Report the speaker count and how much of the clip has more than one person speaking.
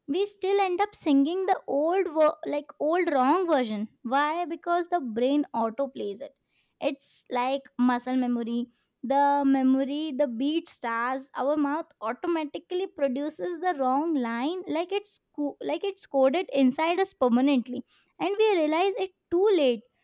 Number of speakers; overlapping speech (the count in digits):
1, no overlap